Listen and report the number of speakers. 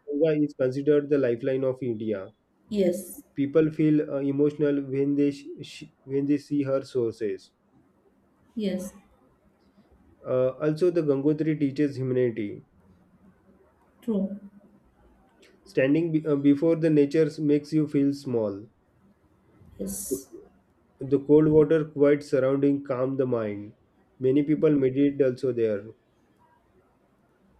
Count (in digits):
2